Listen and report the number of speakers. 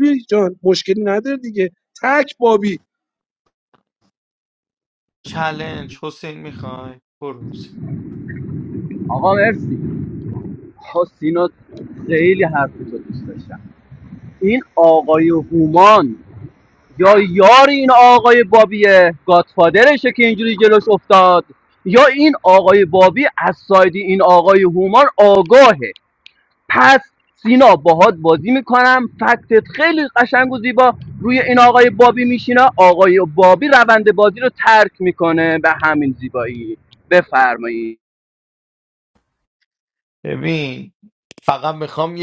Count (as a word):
three